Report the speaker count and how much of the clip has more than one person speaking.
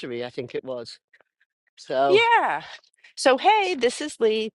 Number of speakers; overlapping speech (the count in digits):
2, about 3%